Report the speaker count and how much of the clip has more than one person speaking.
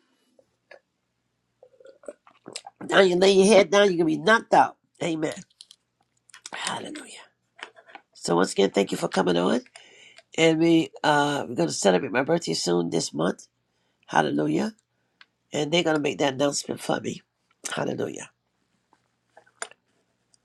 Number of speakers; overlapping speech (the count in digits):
1, no overlap